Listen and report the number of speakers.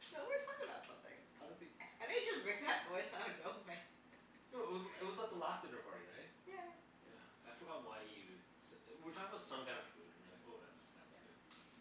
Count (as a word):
two